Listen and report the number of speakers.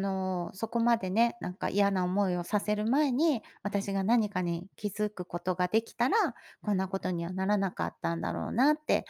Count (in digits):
1